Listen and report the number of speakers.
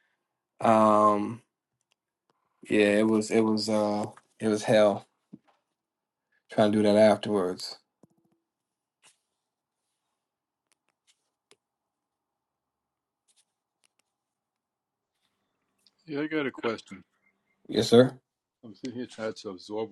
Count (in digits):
2